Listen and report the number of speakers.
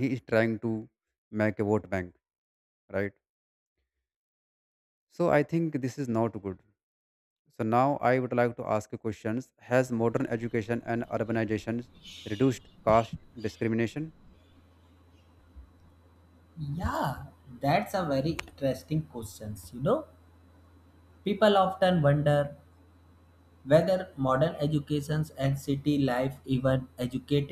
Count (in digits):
2